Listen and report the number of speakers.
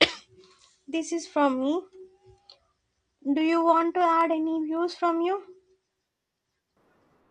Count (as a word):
one